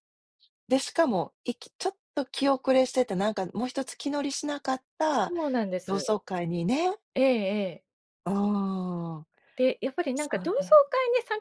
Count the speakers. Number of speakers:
2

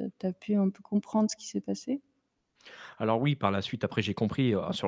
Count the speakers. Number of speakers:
2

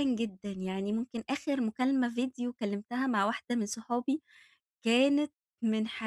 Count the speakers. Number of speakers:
1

